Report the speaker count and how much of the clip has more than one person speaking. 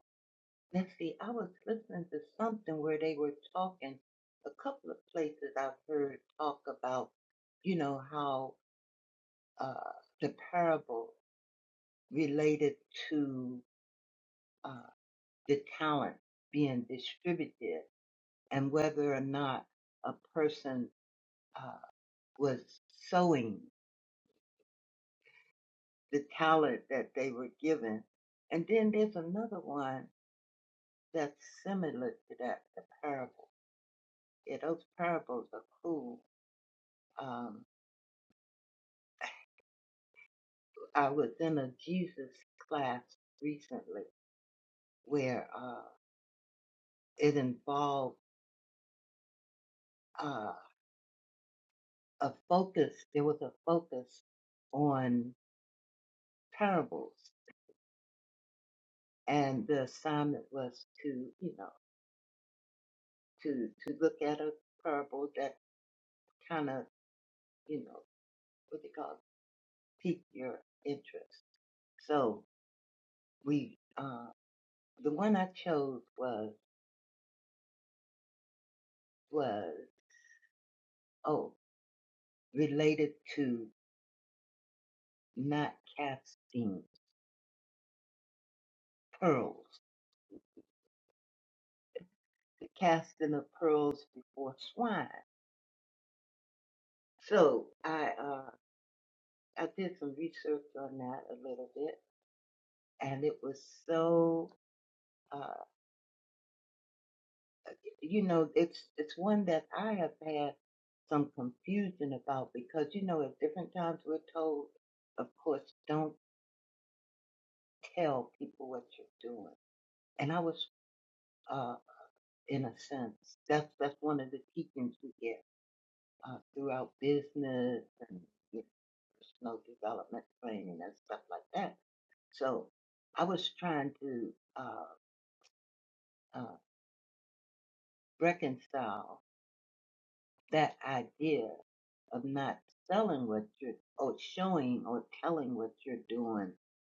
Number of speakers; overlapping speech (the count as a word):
one, no overlap